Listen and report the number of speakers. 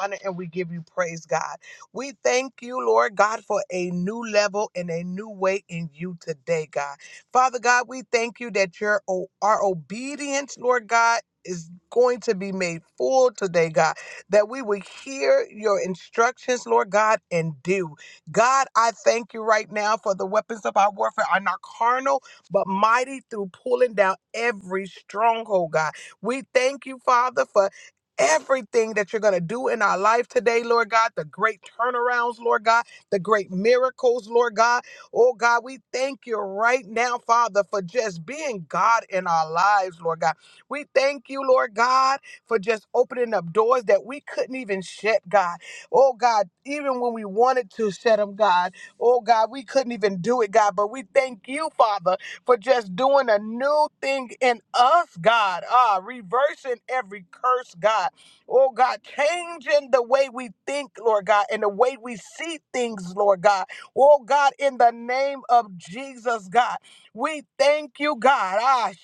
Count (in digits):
1